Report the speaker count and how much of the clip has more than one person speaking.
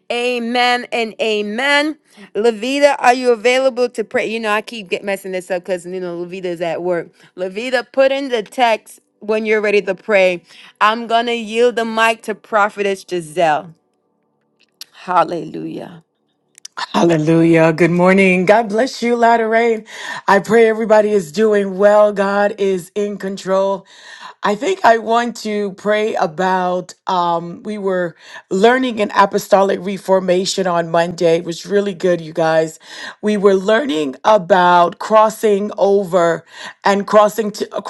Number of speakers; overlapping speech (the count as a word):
two, no overlap